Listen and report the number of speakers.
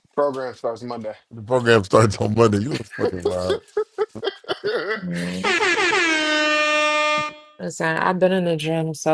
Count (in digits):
3